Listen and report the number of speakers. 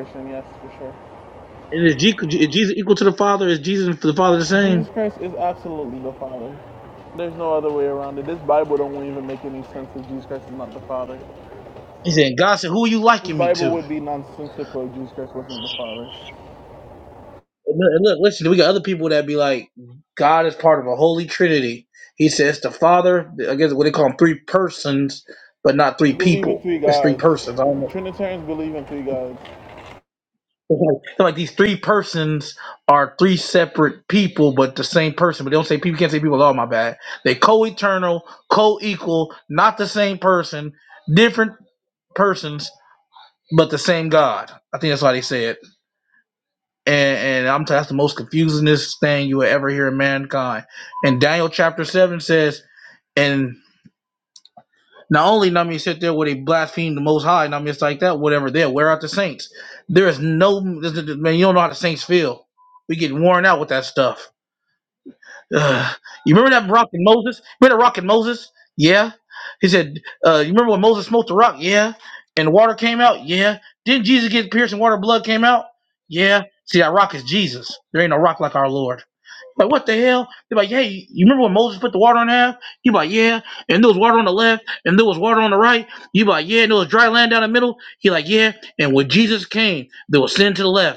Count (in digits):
2